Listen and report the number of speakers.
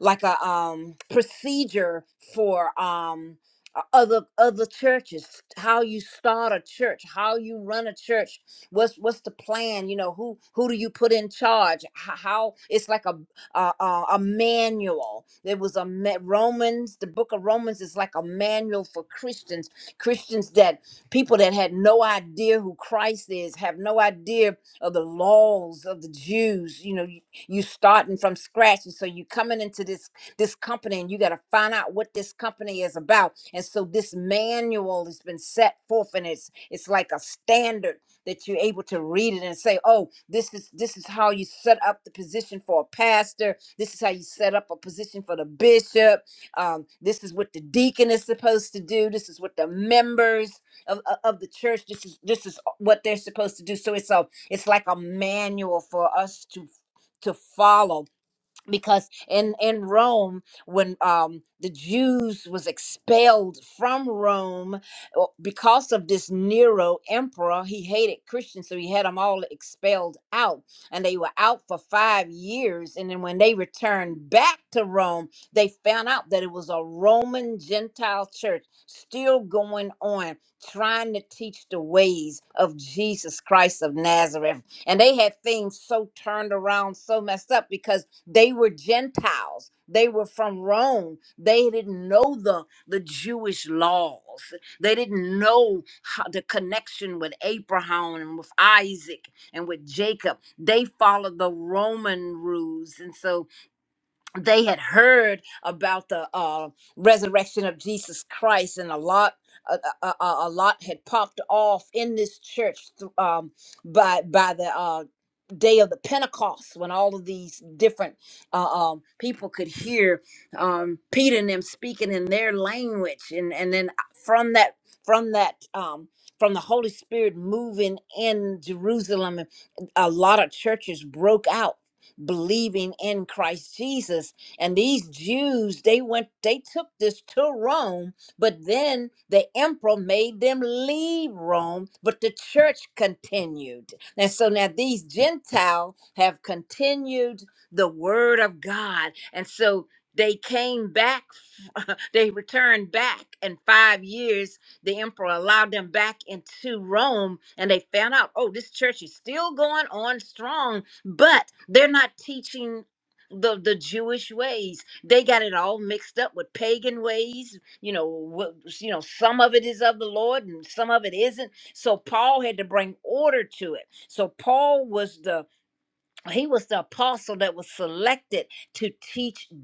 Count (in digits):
1